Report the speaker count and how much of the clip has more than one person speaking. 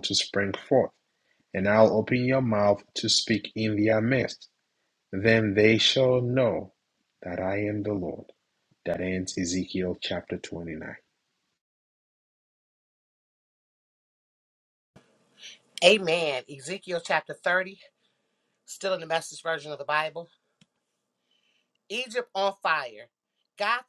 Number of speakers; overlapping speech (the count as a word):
two, no overlap